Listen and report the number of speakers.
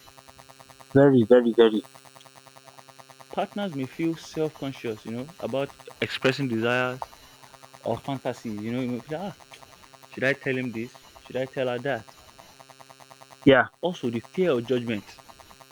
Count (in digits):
2